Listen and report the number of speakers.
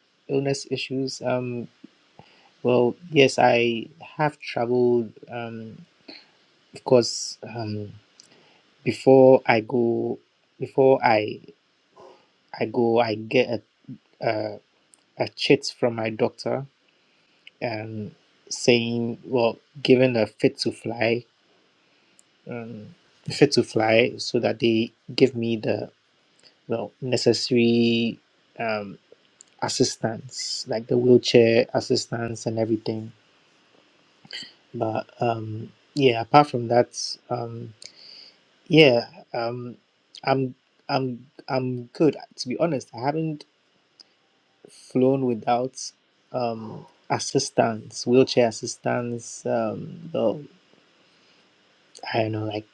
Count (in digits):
1